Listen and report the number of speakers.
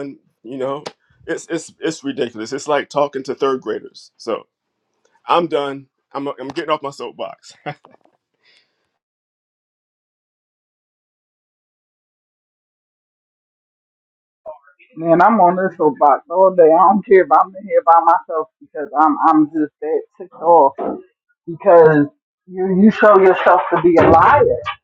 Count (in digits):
2